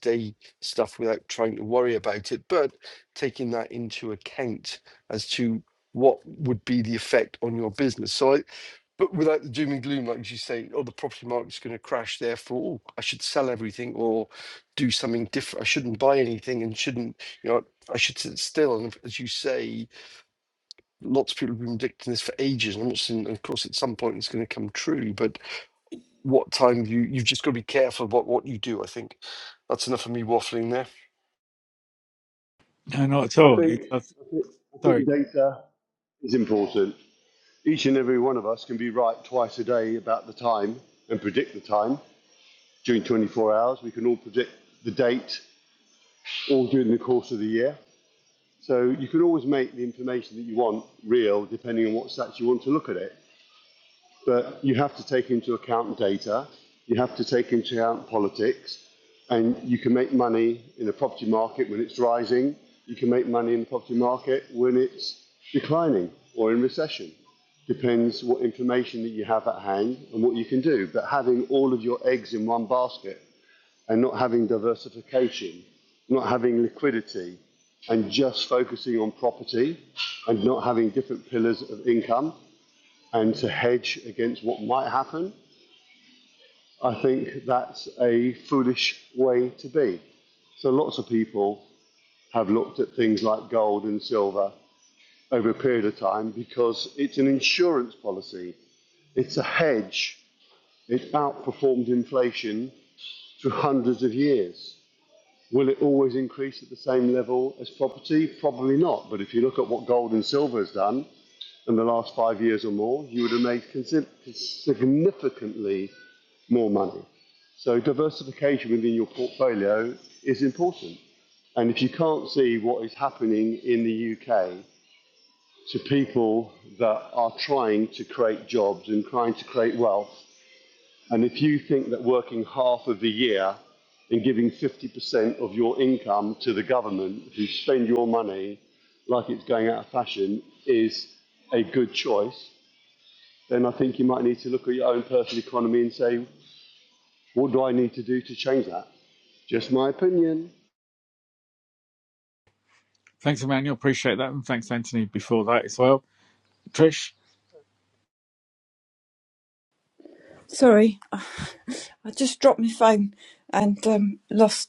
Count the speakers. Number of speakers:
four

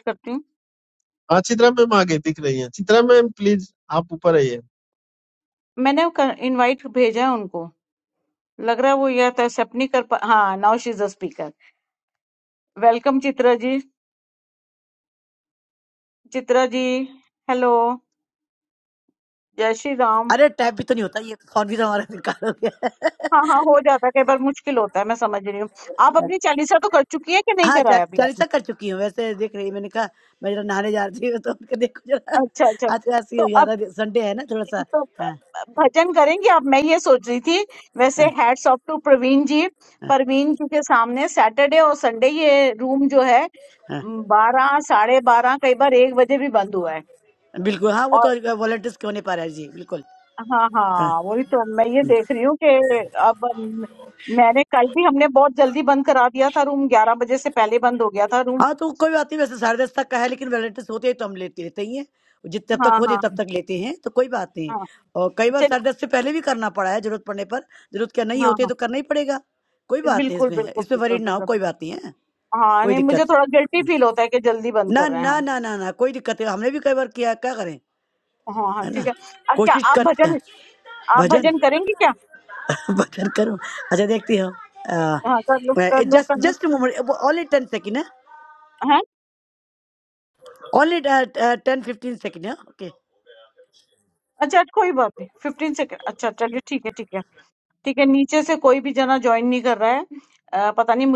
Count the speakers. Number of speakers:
three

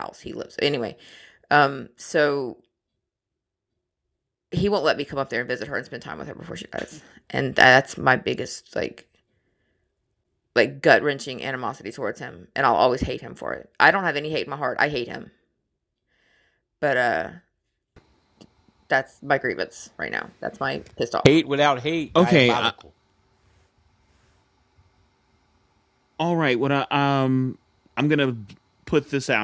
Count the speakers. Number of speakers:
three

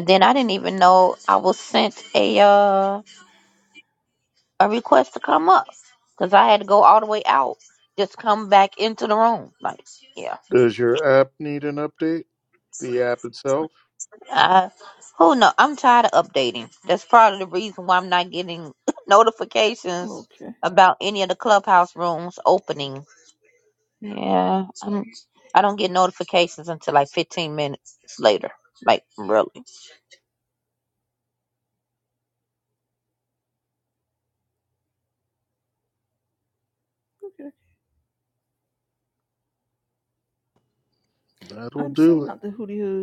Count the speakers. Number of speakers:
three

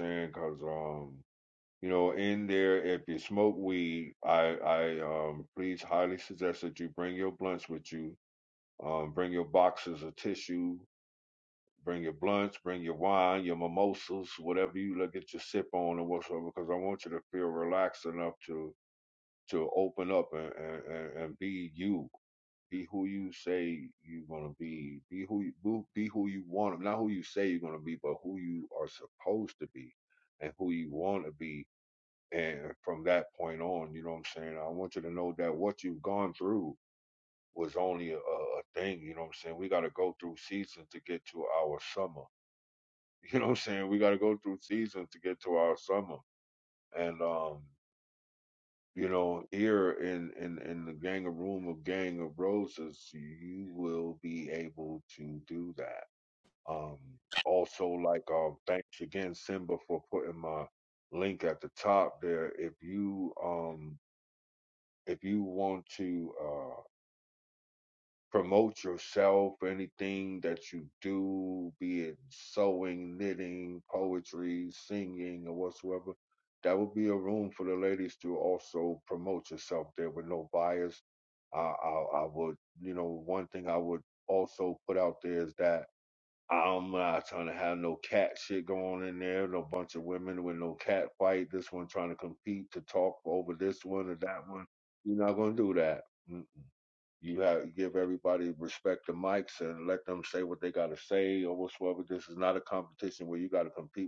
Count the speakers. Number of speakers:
one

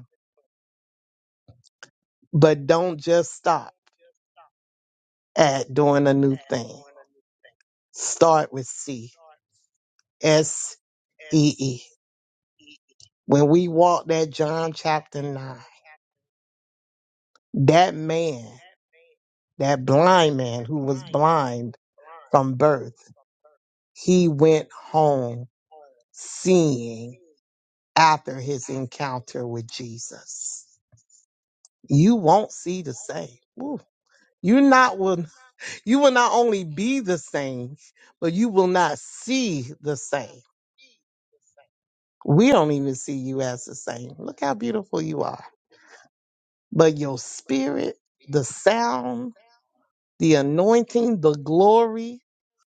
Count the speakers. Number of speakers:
one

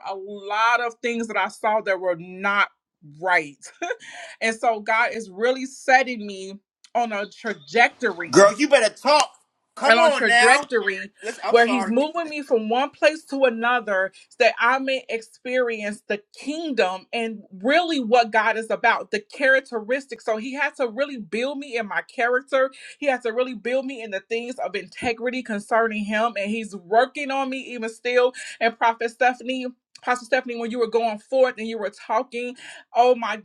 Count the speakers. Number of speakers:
two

